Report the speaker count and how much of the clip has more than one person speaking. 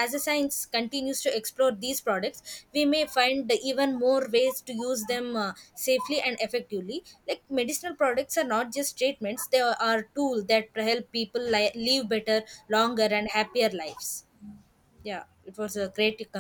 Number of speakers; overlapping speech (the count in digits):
1, no overlap